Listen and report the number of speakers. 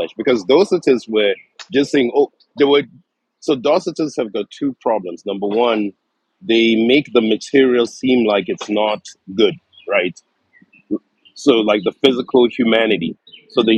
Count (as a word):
one